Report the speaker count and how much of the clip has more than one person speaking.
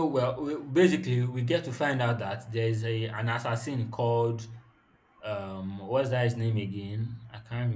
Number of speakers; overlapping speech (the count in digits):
1, no overlap